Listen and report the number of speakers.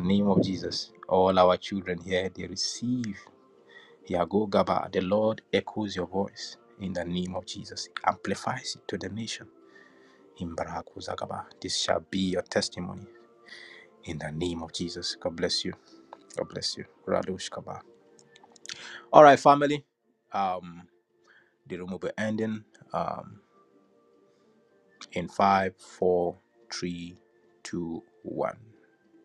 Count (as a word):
one